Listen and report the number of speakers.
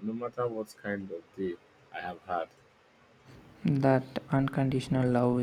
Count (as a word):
two